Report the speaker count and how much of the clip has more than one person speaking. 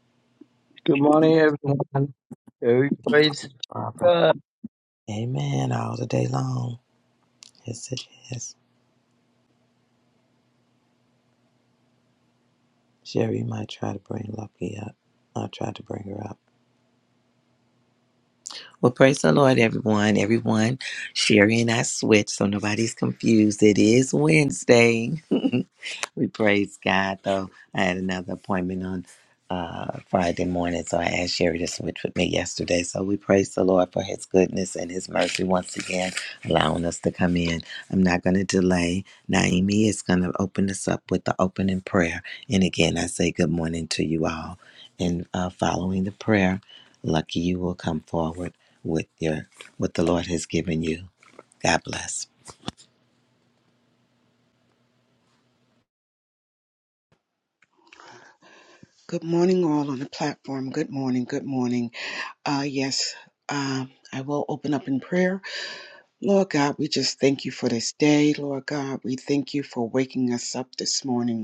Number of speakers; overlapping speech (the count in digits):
3, under 1%